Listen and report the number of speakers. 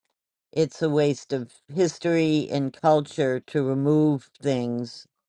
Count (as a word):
one